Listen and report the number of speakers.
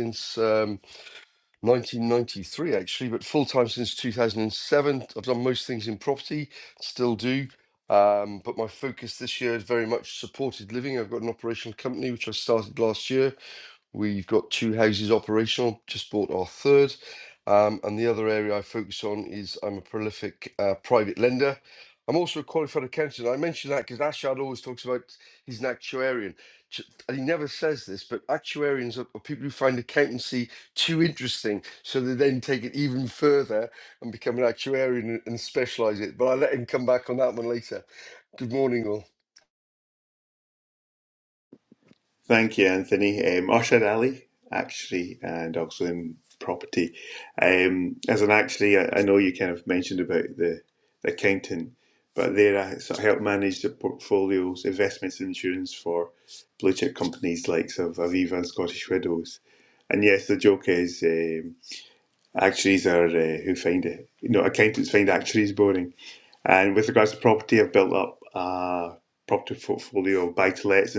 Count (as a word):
two